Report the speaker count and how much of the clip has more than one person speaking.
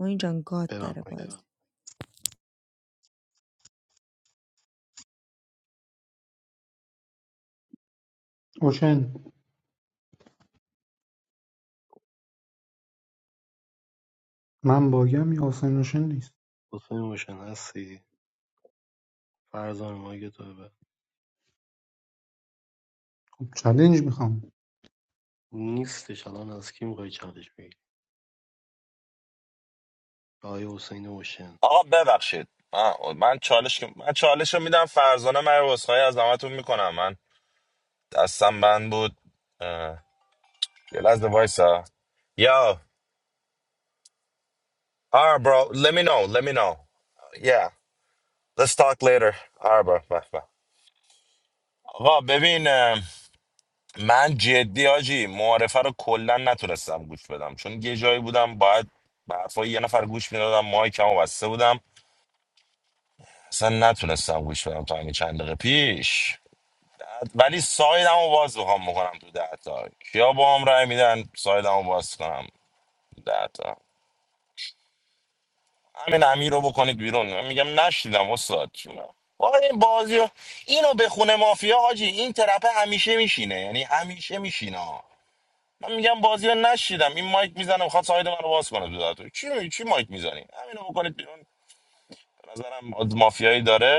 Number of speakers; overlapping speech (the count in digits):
4, under 1%